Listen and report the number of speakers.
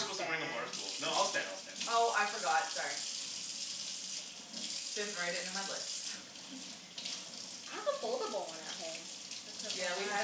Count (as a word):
three